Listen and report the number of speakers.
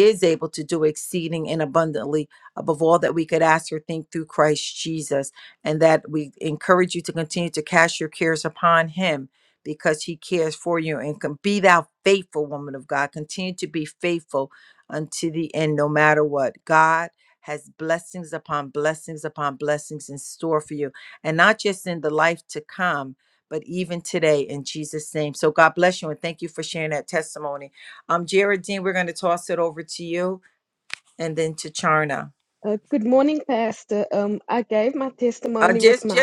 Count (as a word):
two